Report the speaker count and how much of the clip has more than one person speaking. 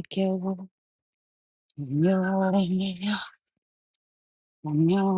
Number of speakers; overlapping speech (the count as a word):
one, no overlap